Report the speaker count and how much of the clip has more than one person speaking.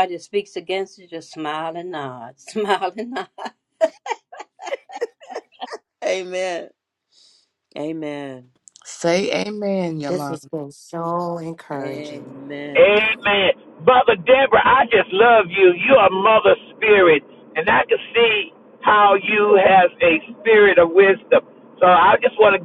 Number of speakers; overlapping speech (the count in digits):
5, about 4%